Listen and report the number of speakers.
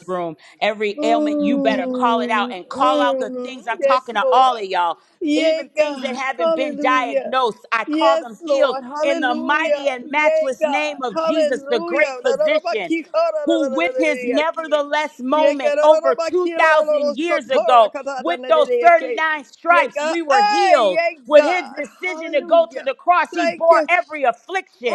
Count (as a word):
two